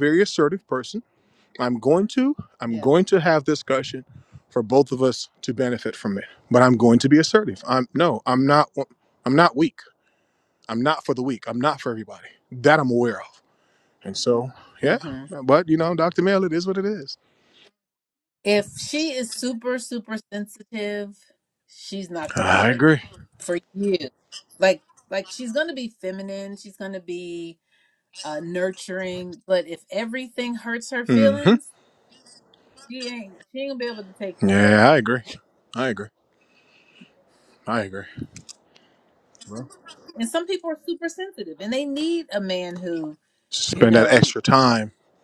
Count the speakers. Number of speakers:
2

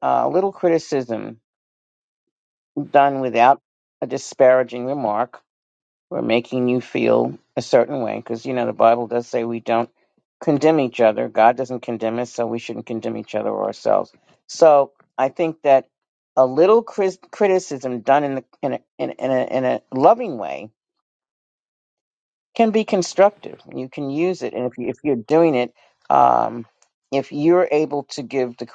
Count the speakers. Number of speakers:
1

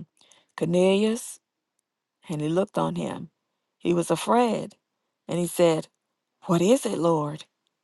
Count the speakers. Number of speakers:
1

